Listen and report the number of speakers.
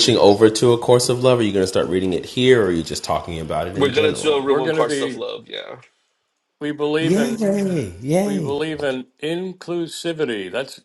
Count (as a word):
three